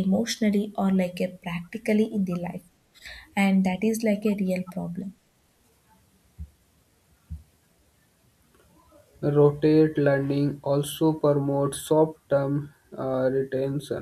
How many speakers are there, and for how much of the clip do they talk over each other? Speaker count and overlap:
two, no overlap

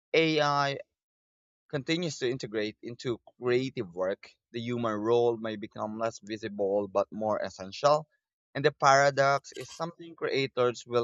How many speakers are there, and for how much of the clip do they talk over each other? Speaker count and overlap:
one, no overlap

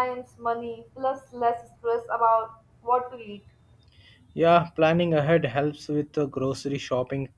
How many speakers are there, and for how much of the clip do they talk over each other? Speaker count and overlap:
two, no overlap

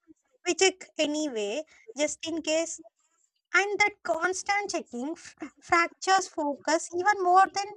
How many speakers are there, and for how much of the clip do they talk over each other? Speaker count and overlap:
one, no overlap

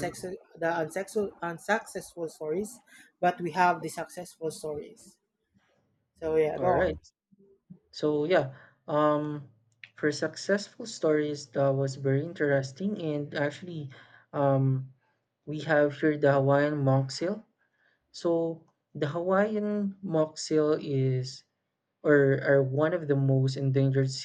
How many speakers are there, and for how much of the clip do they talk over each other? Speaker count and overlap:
two, about 2%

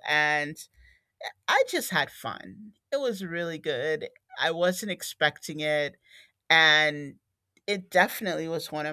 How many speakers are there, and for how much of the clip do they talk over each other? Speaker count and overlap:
one, no overlap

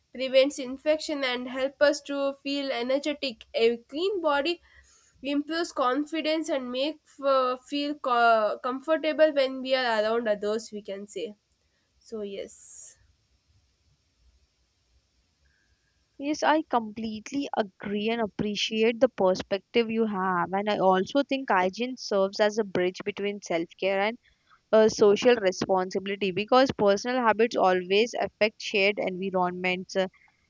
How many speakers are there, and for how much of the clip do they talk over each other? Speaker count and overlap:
two, no overlap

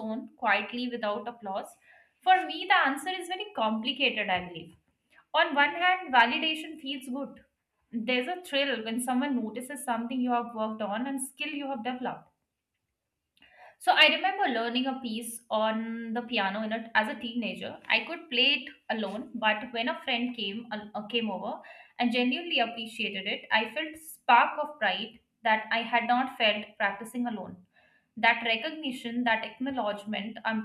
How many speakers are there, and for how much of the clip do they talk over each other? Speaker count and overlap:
one, no overlap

